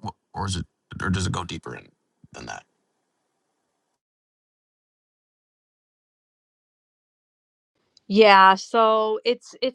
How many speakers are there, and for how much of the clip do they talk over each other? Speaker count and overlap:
2, no overlap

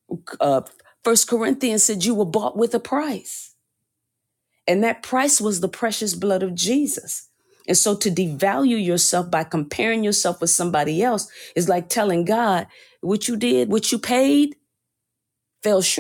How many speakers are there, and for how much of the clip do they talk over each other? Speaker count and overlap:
1, no overlap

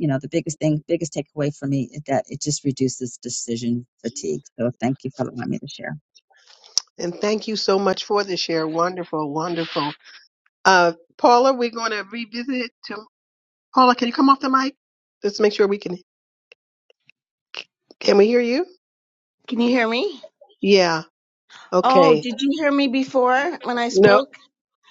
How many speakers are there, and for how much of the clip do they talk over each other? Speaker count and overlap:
3, about 3%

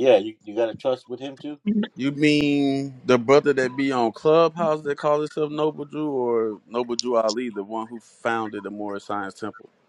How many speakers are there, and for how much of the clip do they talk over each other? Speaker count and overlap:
2, no overlap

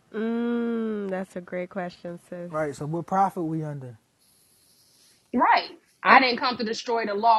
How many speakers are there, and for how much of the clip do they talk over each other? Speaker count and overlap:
3, no overlap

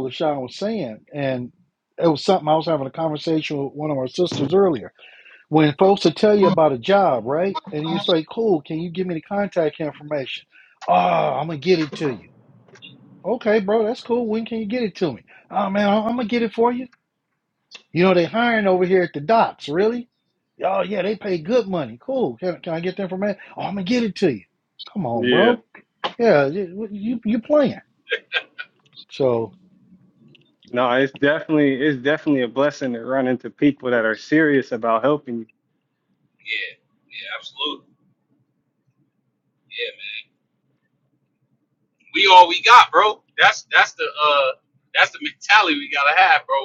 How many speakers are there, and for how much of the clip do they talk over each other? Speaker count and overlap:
3, about 1%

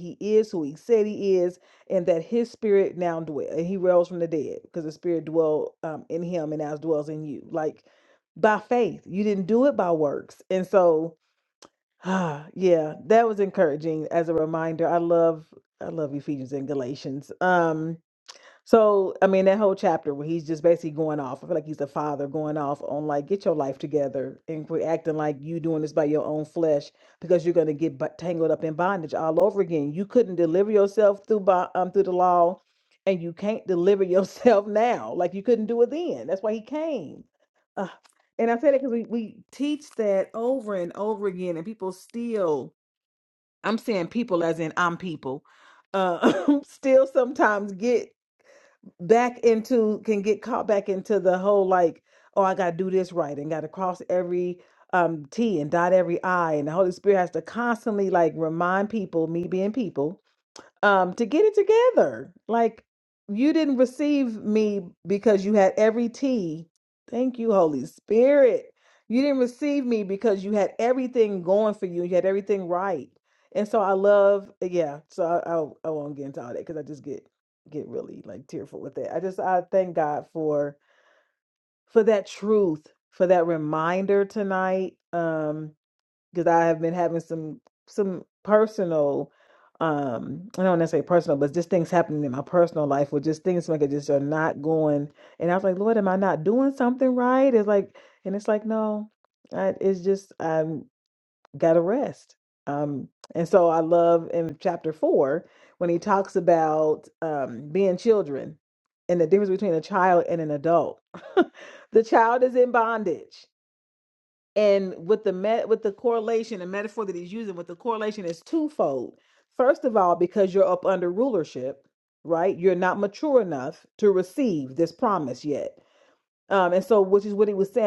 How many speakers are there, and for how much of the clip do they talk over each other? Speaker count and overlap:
1, no overlap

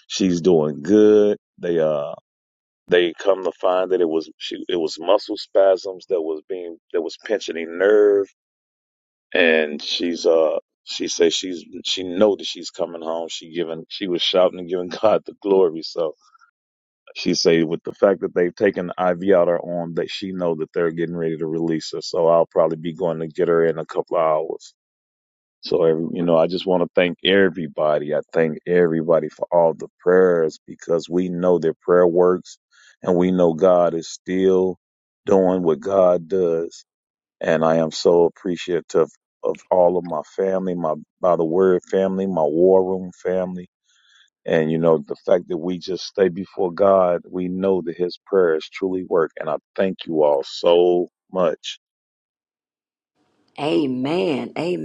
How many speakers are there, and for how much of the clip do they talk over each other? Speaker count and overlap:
2, no overlap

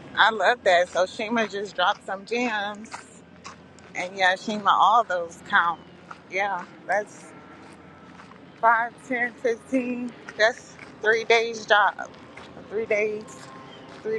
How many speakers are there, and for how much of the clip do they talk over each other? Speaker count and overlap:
1, no overlap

